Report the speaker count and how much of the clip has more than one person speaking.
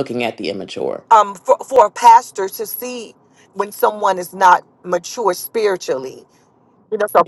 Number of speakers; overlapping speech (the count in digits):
2, about 1%